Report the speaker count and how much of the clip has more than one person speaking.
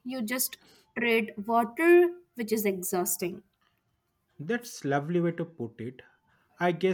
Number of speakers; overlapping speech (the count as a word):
two, no overlap